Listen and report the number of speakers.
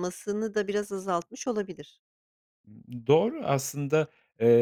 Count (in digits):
2